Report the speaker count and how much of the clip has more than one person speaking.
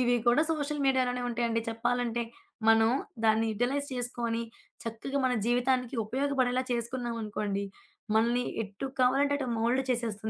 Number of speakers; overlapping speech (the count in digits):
1, no overlap